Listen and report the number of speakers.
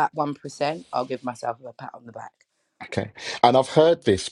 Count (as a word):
two